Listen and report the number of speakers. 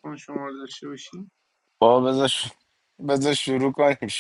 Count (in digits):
2